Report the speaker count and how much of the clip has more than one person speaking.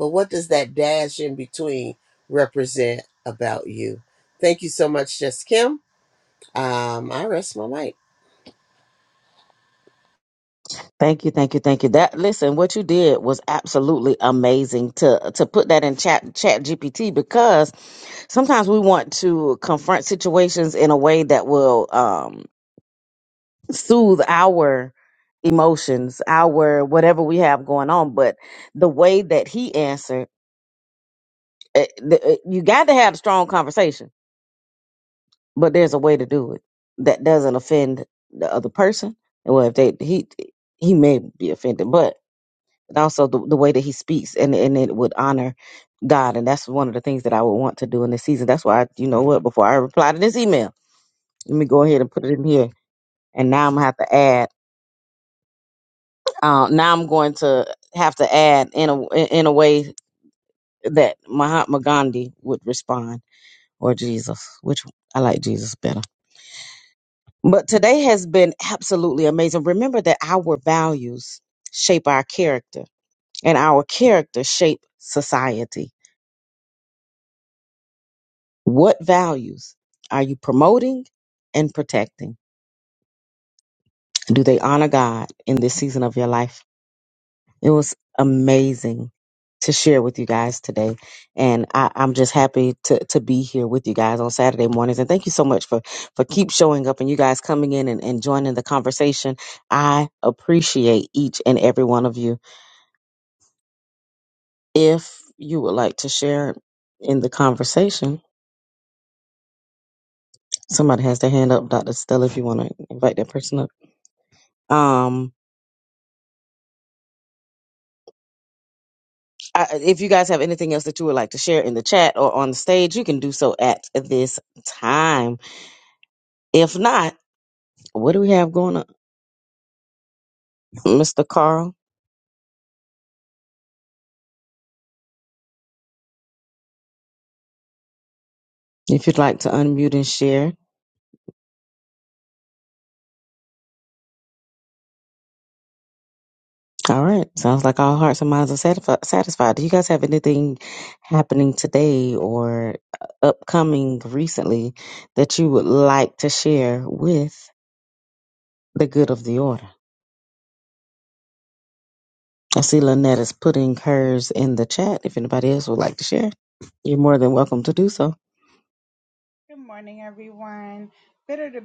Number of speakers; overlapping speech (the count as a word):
three, no overlap